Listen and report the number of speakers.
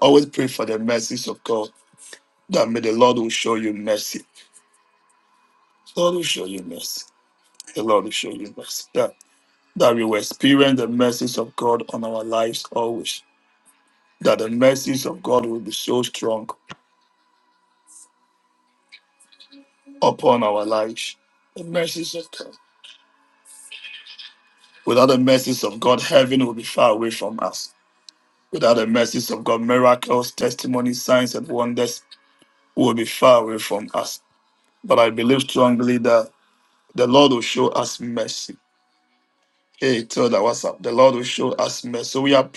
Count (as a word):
one